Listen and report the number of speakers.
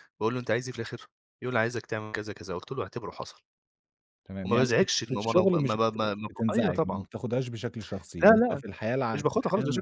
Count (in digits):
2